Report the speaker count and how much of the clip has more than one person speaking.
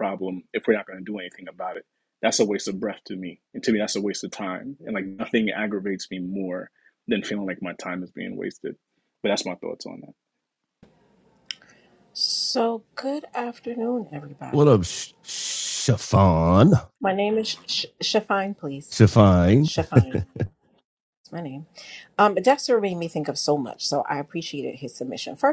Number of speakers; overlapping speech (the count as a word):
three, under 1%